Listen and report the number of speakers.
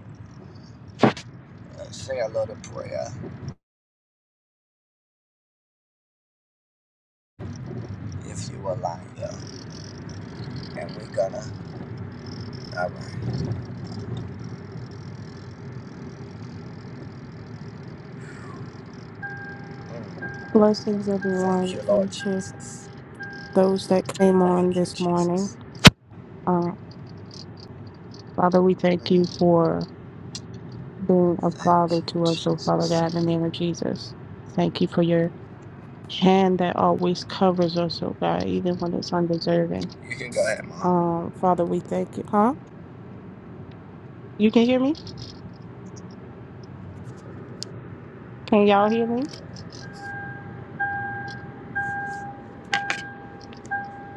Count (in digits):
2